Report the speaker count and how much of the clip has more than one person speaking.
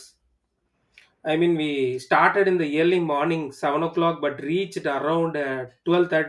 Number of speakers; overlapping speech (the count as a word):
one, no overlap